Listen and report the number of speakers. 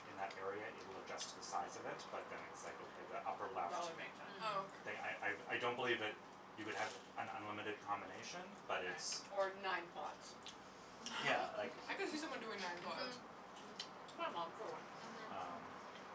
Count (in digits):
3